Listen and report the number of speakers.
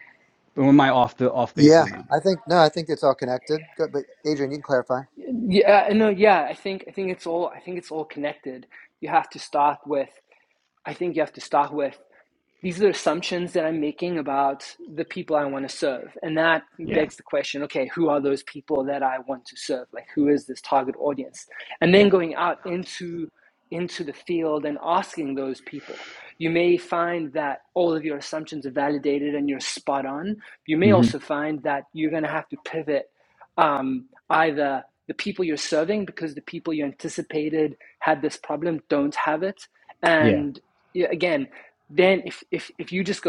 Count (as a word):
three